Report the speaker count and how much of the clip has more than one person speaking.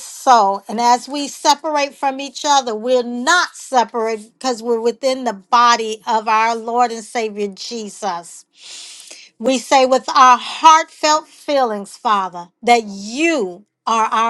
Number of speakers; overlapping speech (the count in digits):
1, no overlap